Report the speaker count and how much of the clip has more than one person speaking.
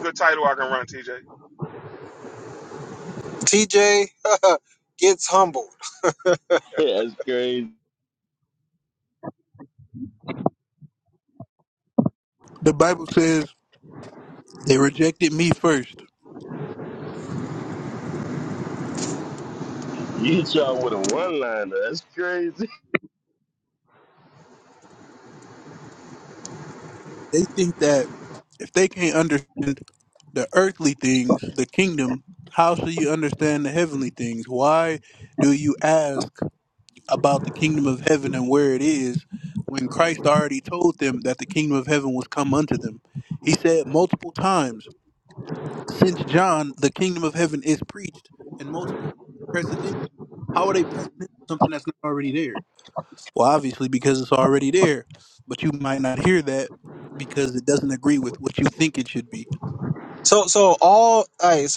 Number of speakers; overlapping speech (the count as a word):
four, no overlap